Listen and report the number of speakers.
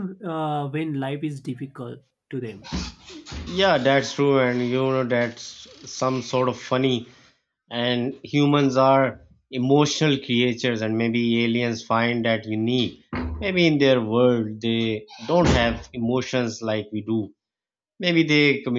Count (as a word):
two